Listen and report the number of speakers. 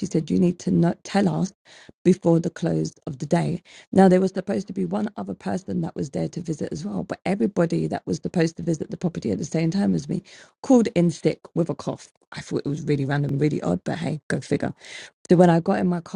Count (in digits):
1